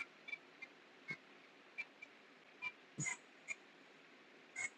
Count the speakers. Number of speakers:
zero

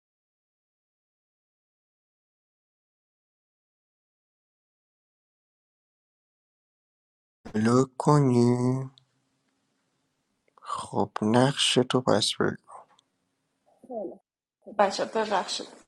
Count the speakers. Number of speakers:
two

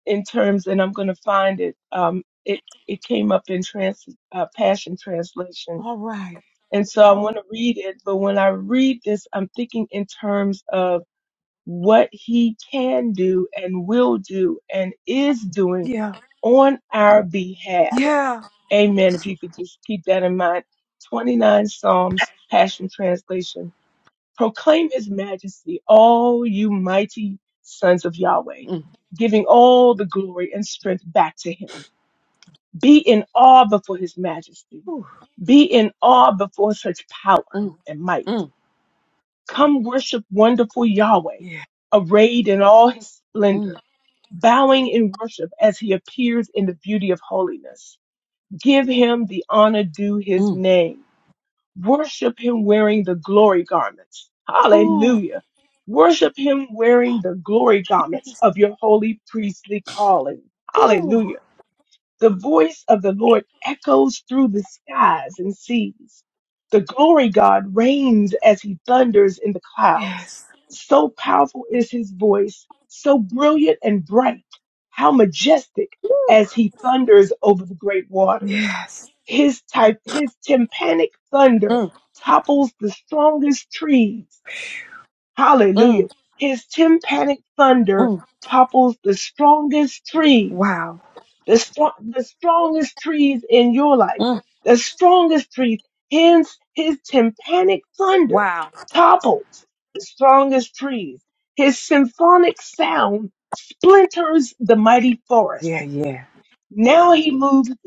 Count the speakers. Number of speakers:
two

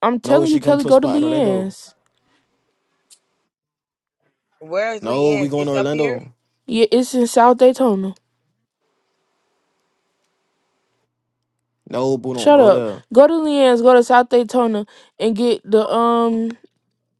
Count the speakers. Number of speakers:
three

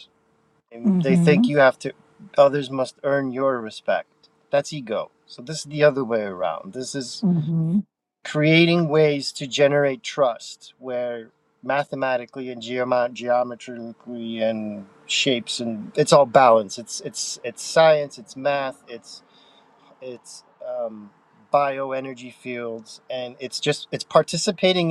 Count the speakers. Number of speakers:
two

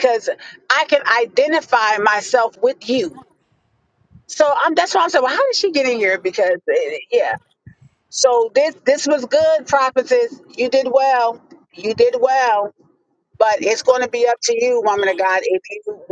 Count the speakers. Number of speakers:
one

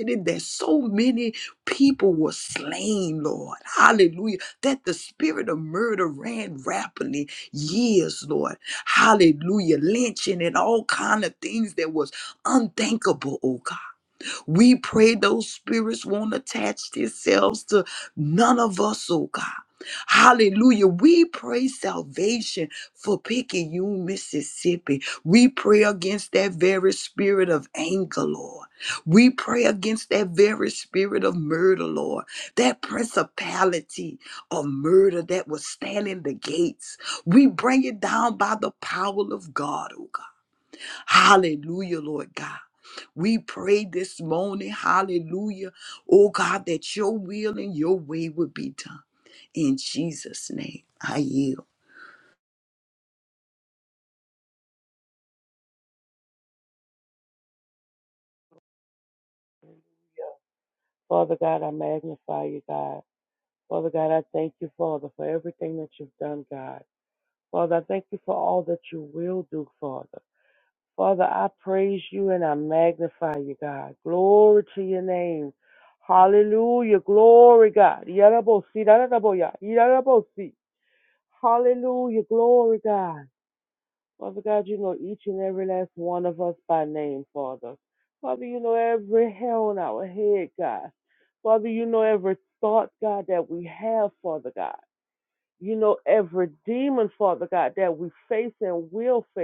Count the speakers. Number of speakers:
two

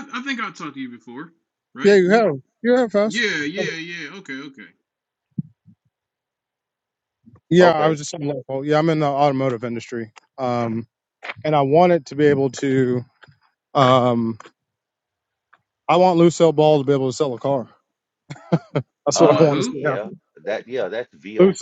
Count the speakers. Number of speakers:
three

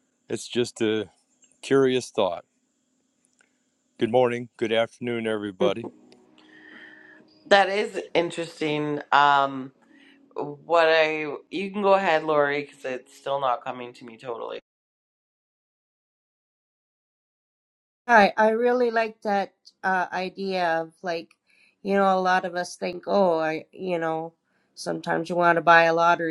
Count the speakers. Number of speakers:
three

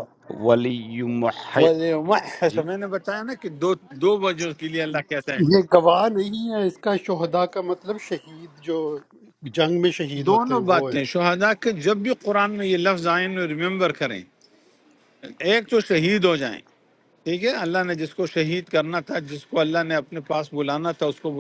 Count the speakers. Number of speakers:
three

